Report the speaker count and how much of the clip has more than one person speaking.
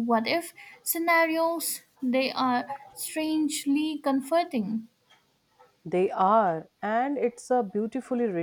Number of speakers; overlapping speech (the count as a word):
two, no overlap